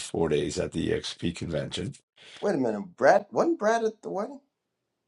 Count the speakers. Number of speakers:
2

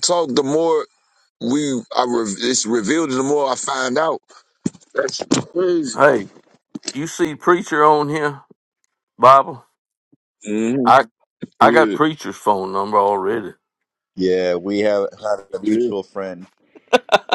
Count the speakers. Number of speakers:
3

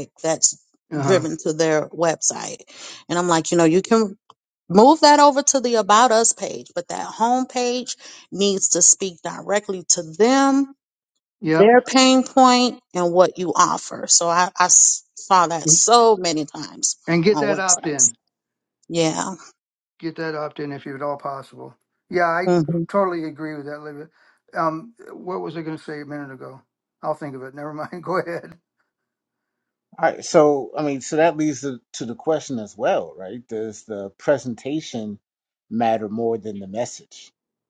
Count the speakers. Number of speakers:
3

